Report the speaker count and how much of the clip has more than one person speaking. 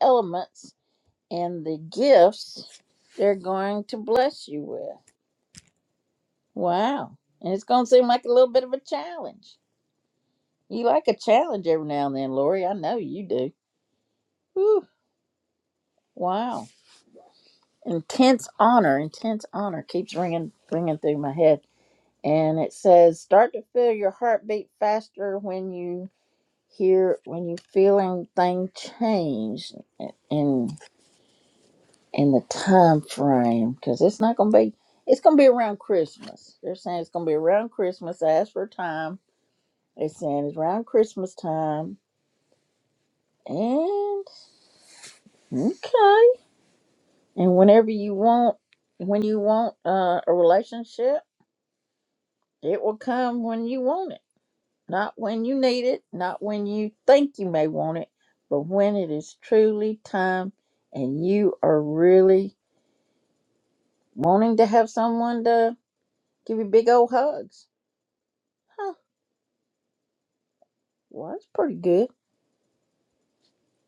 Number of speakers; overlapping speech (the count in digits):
1, no overlap